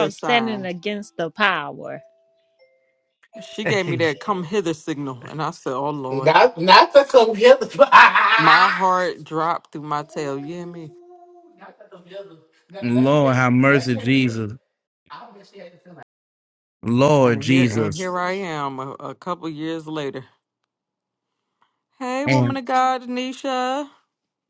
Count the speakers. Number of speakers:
4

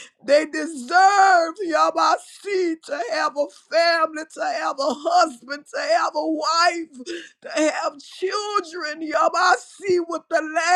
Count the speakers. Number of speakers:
1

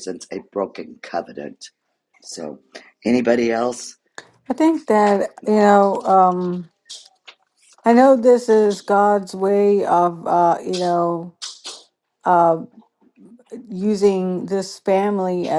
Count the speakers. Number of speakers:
2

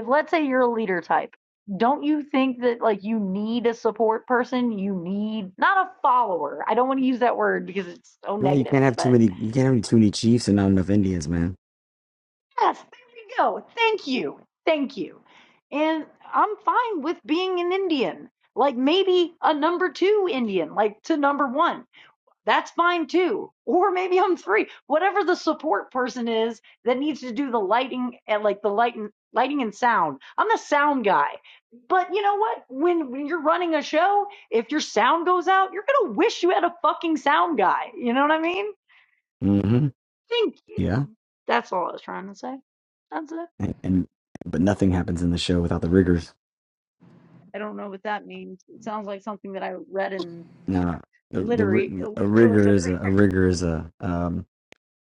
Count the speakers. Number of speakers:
2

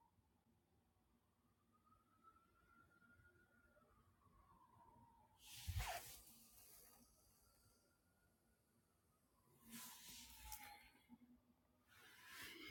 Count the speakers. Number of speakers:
0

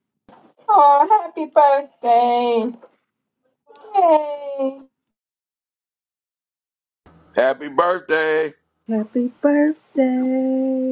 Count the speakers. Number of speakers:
3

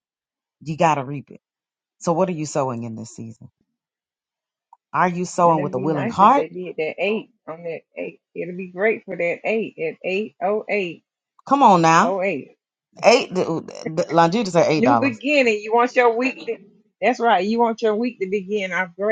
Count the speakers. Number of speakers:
2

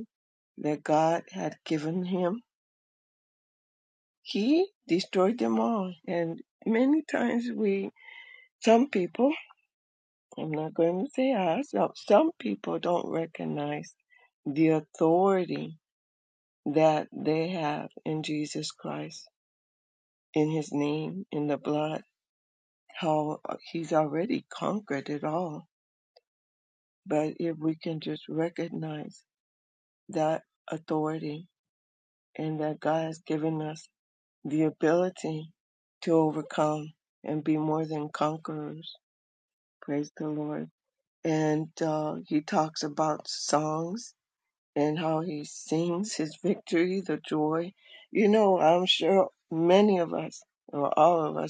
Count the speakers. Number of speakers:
1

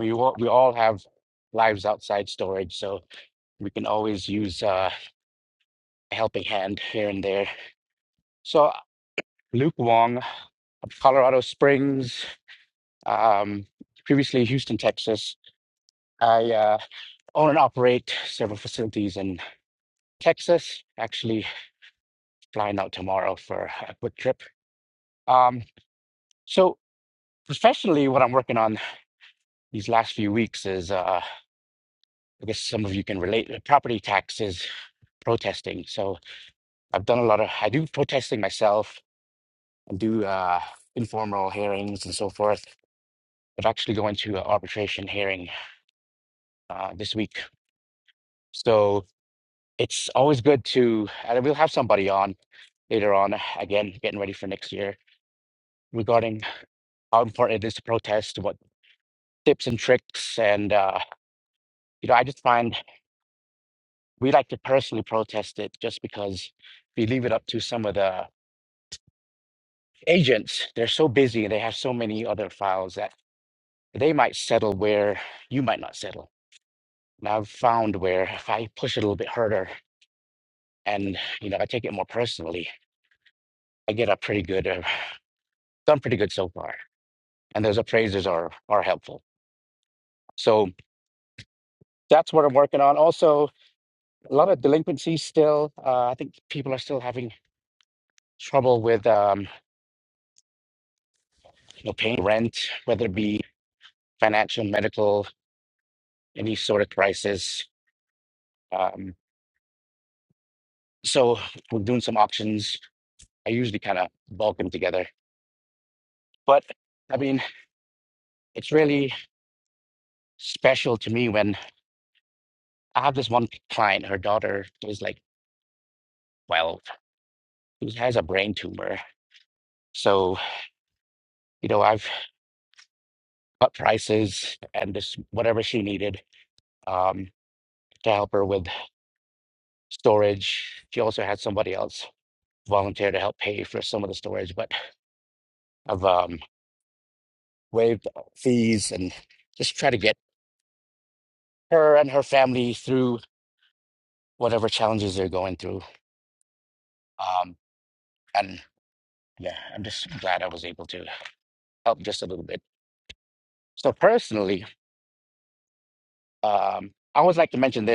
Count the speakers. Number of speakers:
1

